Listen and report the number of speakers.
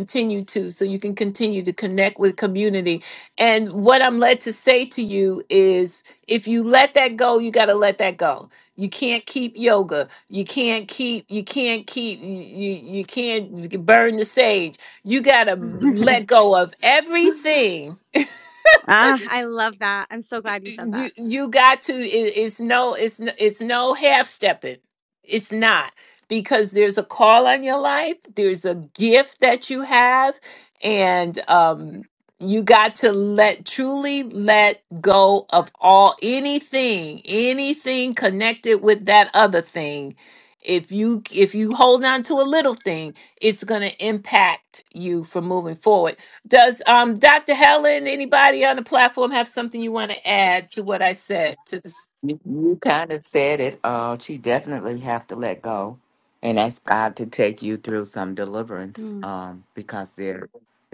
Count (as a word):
three